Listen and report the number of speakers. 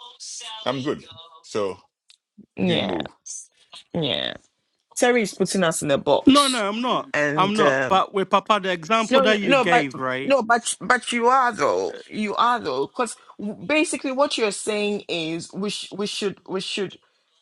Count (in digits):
3